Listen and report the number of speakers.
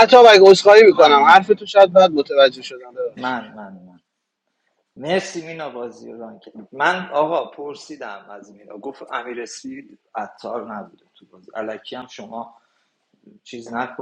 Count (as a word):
two